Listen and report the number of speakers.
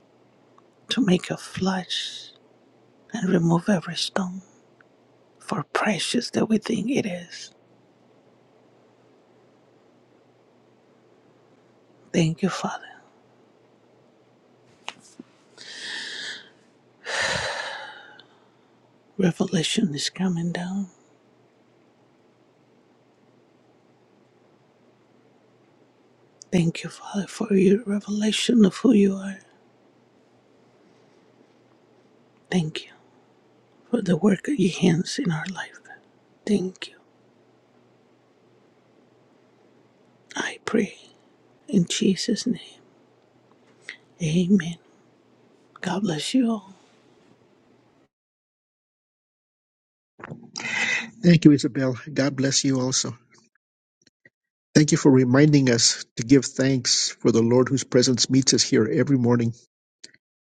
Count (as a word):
two